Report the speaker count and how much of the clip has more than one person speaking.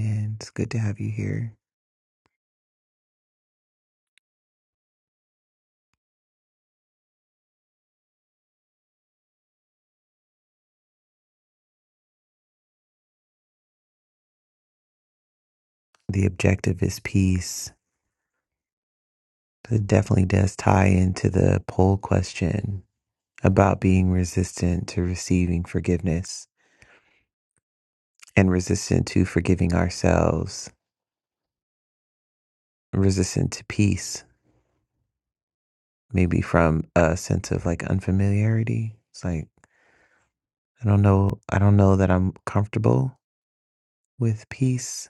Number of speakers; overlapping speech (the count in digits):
1, no overlap